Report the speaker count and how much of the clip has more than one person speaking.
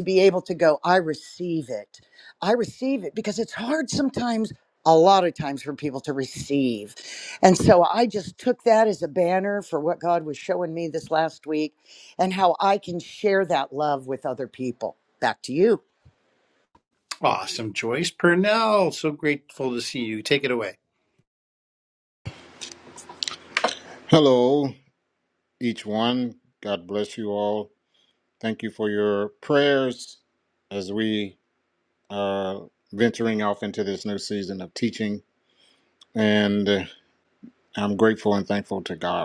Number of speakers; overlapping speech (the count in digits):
3, no overlap